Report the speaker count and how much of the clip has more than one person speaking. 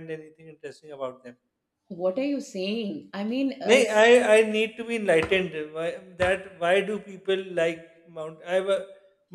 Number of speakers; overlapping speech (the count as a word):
two, about 3%